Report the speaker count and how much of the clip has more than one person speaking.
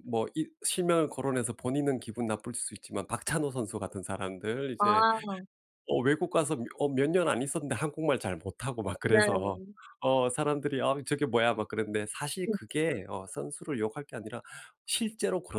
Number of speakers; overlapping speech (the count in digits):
2, about 6%